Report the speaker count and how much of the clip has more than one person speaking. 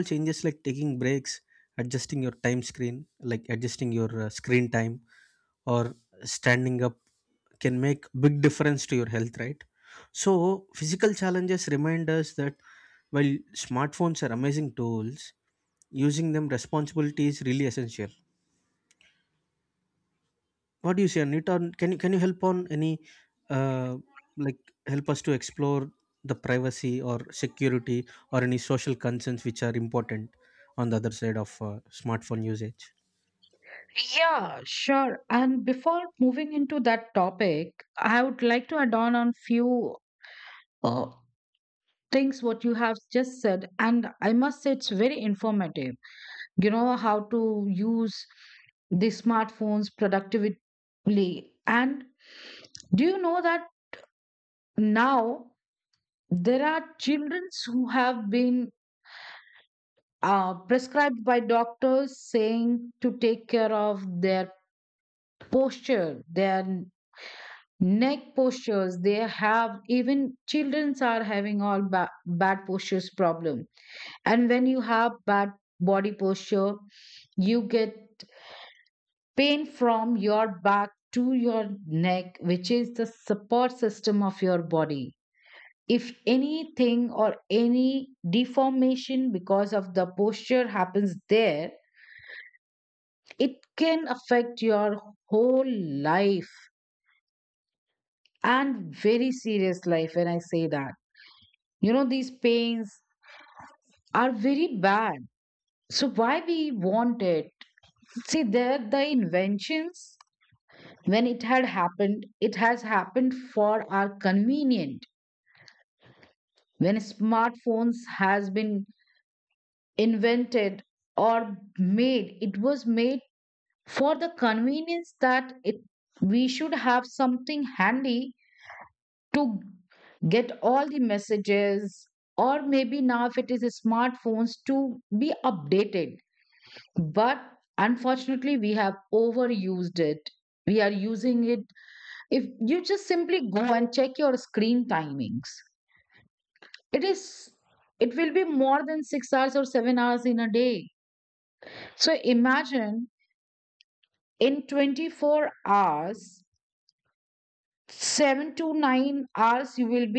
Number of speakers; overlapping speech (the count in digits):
2, no overlap